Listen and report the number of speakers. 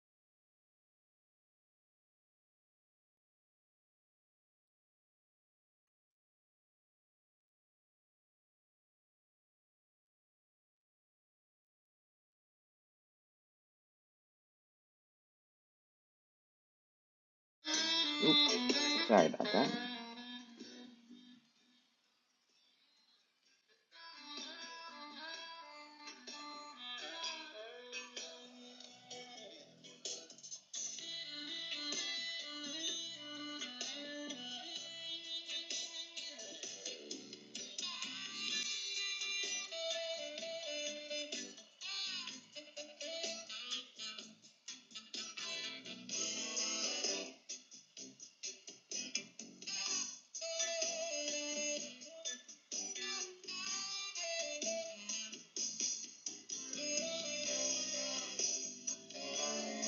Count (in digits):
1